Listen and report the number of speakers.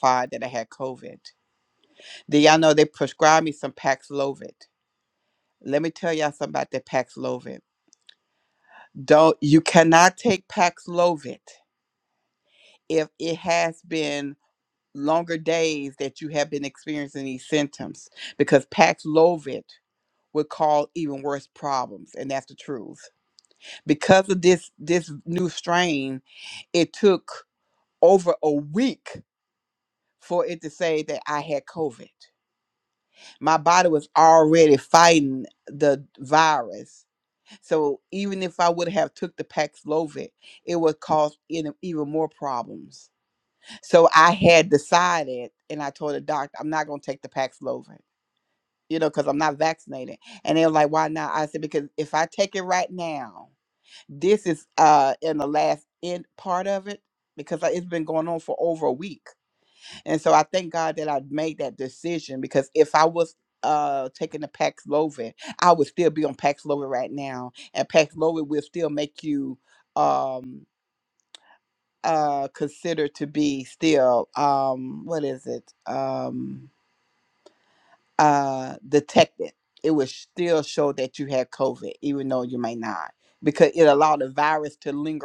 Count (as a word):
one